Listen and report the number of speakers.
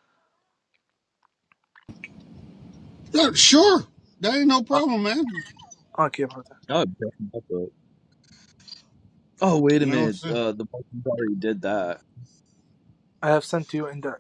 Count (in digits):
3